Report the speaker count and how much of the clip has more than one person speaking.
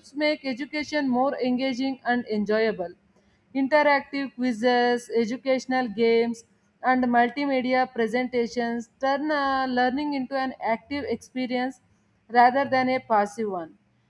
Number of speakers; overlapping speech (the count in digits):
1, no overlap